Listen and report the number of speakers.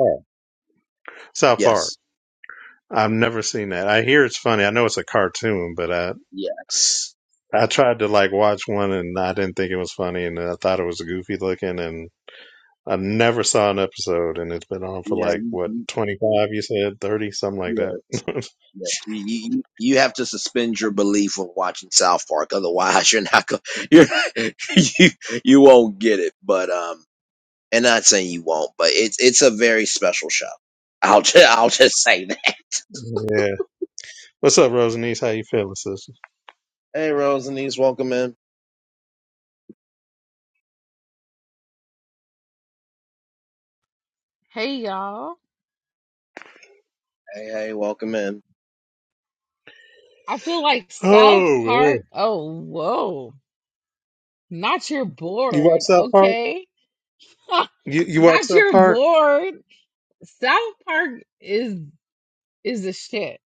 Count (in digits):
3